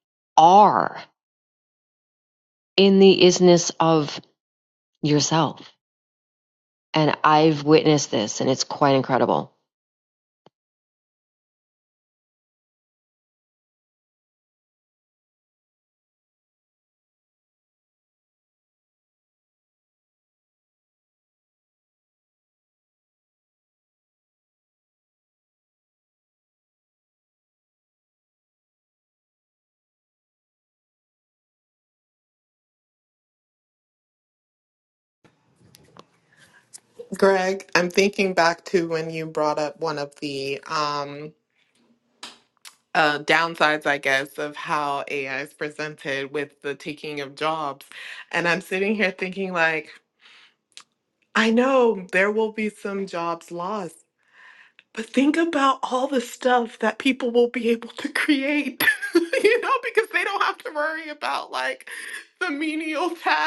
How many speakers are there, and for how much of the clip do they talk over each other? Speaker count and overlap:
2, no overlap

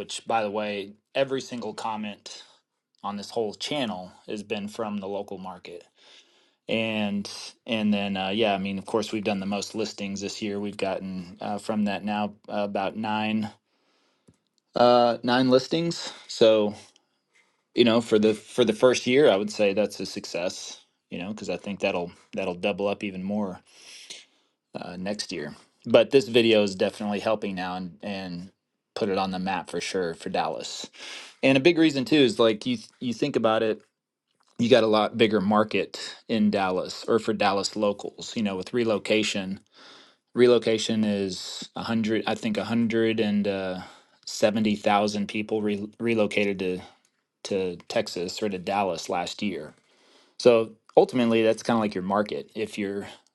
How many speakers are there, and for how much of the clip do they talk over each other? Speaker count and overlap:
1, no overlap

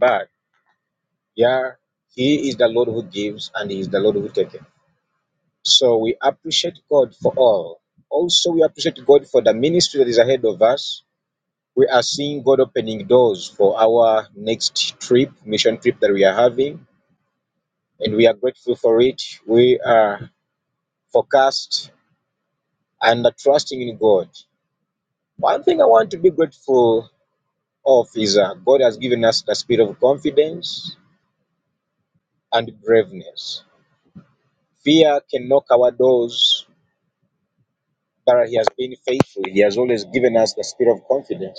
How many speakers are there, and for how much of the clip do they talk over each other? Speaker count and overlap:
1, no overlap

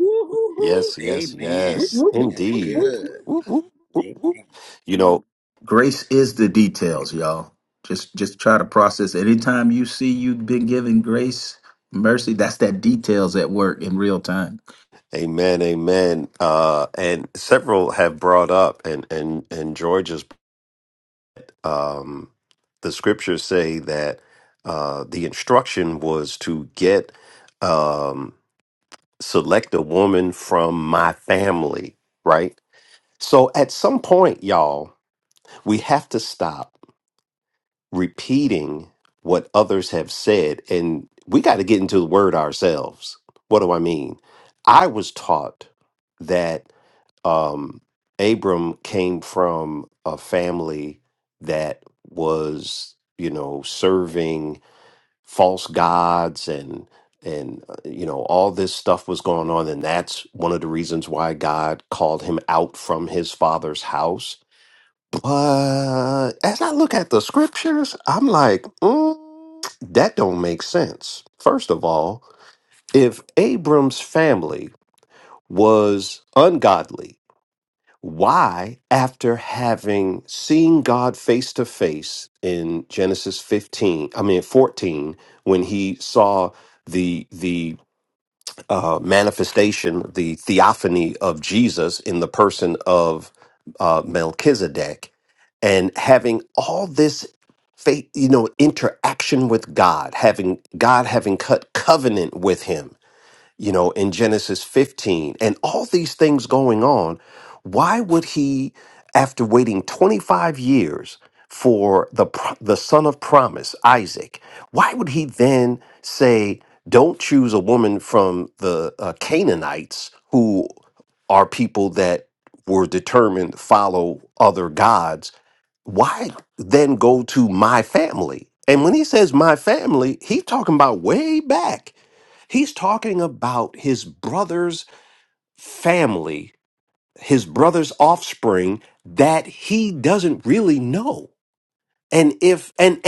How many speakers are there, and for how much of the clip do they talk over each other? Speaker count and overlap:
3, about 1%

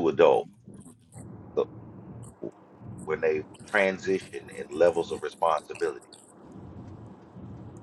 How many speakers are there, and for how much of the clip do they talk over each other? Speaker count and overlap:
1, no overlap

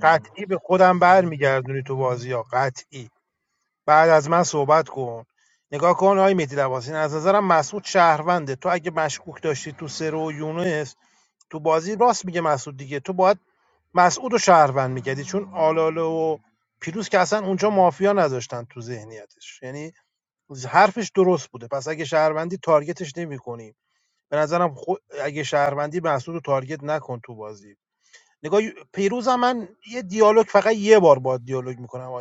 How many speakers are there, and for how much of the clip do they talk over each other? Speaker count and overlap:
1, no overlap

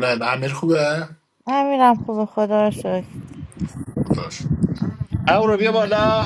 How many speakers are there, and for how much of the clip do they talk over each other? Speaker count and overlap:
3, no overlap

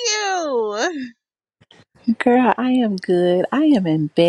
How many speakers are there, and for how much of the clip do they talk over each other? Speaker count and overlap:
2, no overlap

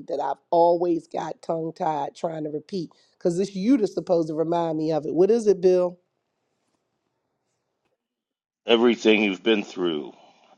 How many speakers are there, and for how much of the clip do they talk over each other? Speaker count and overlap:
2, no overlap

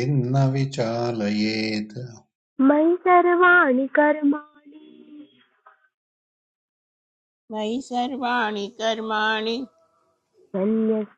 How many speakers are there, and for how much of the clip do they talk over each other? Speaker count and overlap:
3, no overlap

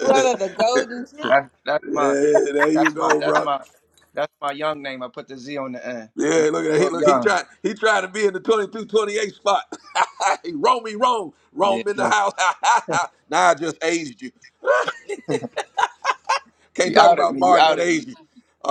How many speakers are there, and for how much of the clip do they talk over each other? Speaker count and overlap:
3, about 23%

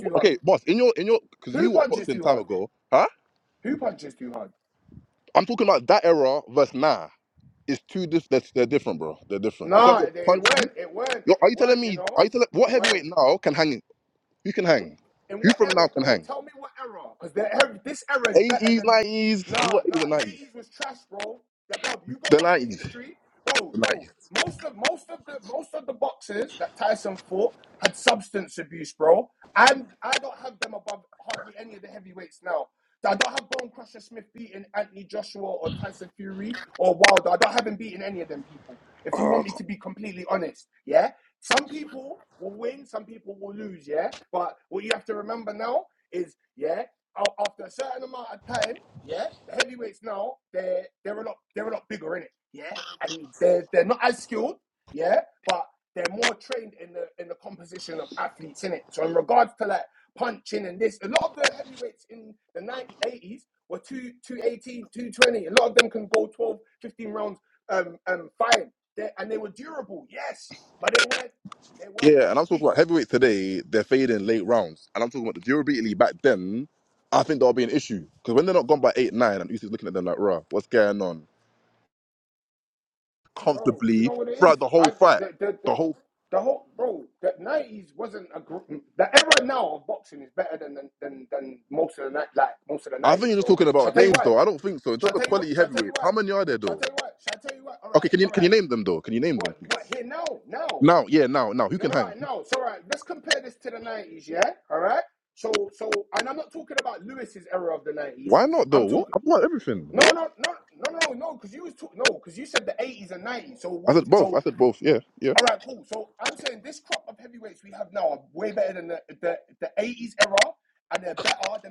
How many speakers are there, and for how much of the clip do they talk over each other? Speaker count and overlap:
2, about 12%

